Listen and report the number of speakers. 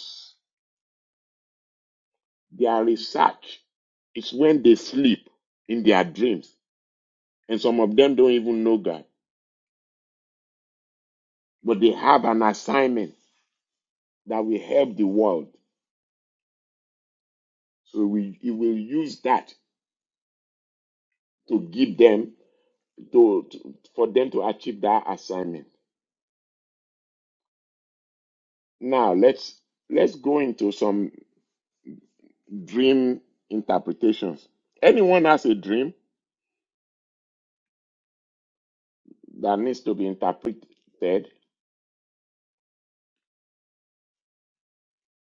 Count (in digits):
1